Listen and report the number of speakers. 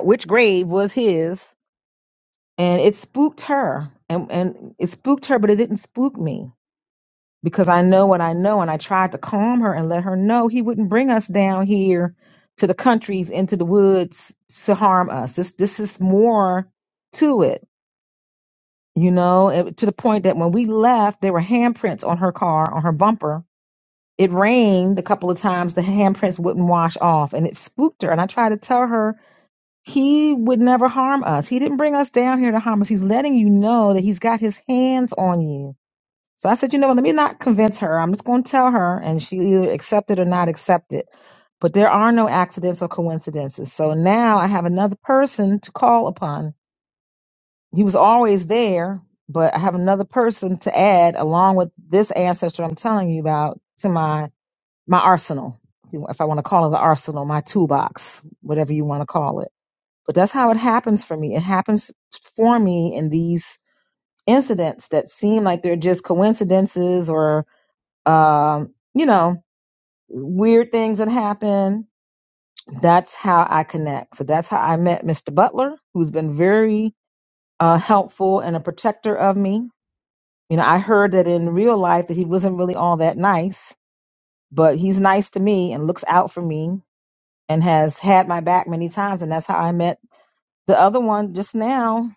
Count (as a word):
one